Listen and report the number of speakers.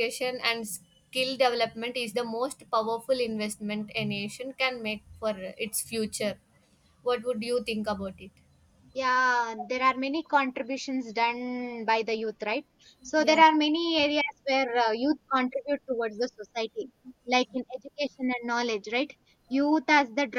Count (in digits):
2